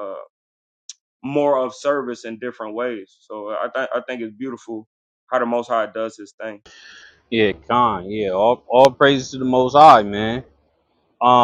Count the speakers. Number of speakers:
2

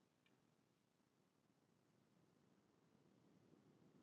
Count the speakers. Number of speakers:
0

